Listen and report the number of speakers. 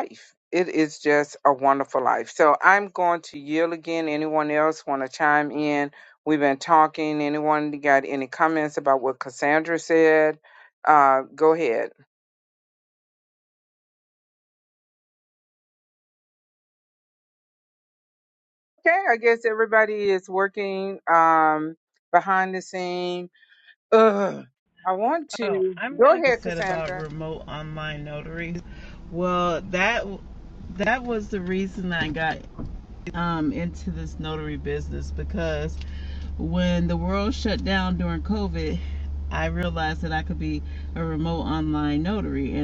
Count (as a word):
two